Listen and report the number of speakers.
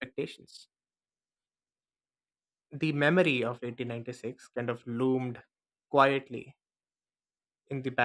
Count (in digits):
1